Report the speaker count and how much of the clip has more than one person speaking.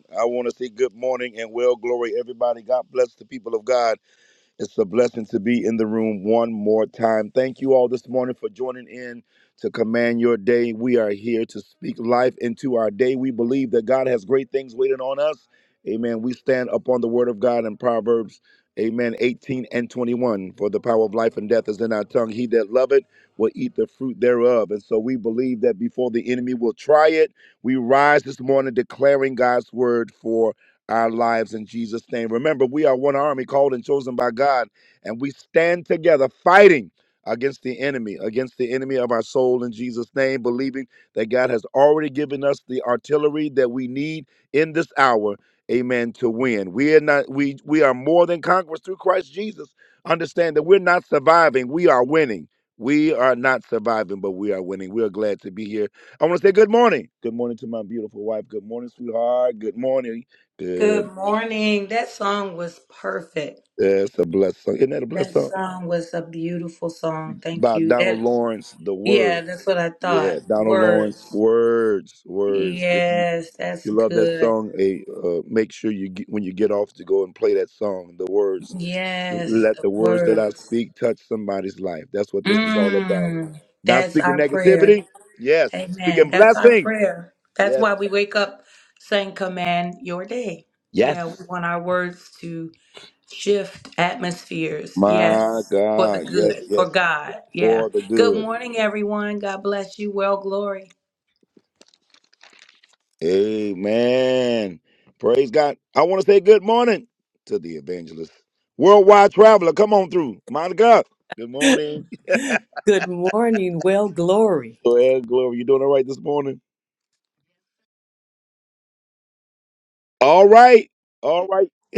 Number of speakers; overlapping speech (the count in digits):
3, about 9%